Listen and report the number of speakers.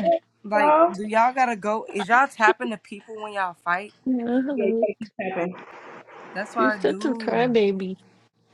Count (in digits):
3